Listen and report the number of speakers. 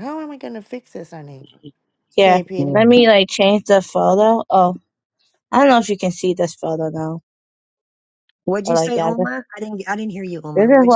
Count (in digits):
3